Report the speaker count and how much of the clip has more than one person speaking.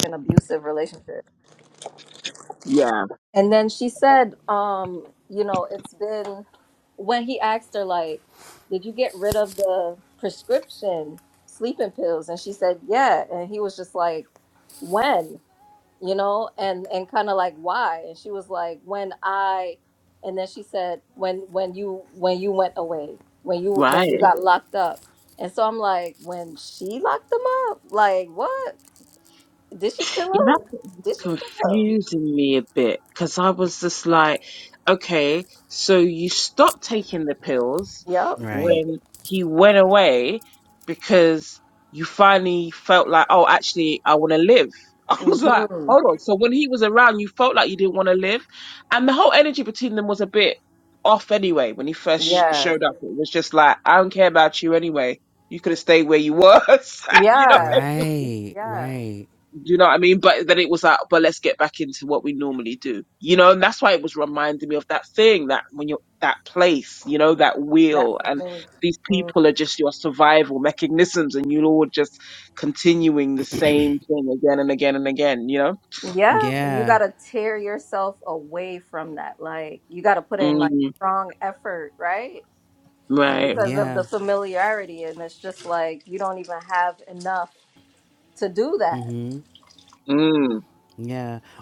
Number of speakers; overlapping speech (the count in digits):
3, about 7%